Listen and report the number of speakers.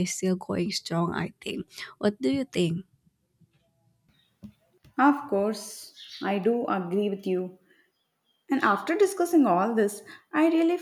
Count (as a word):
two